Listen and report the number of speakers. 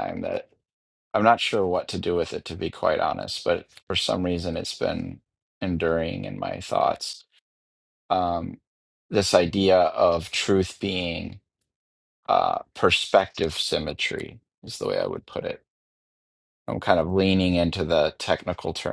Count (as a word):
one